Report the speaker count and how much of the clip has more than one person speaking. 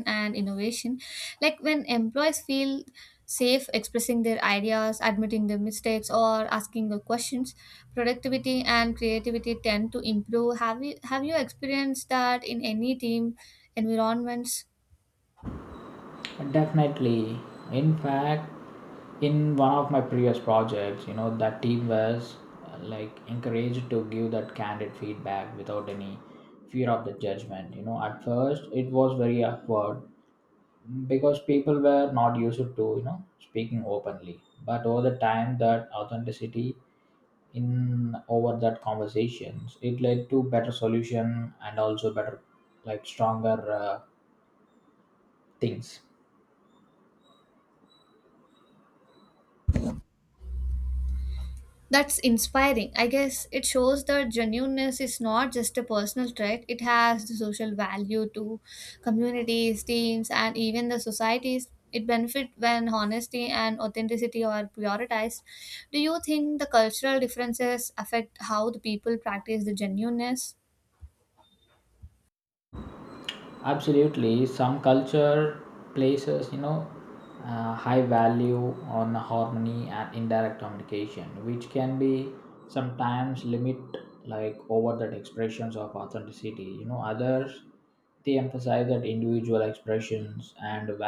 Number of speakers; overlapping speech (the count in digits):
2, no overlap